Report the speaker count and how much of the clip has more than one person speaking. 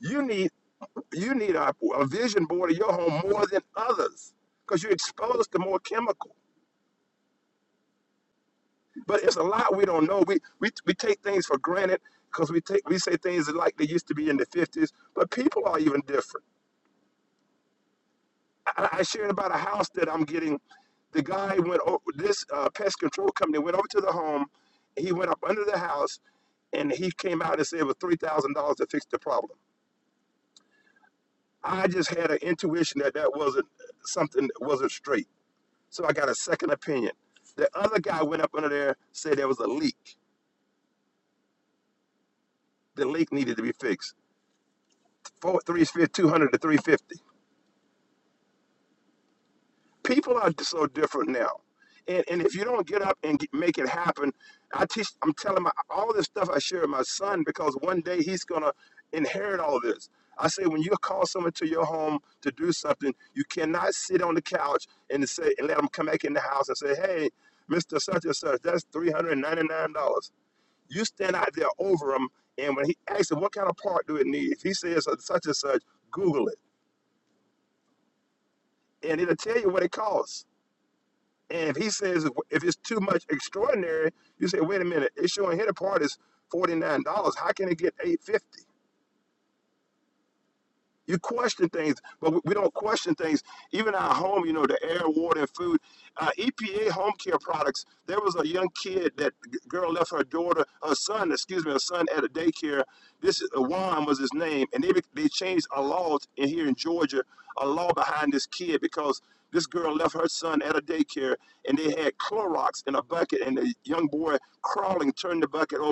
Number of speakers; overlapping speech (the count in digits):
1, no overlap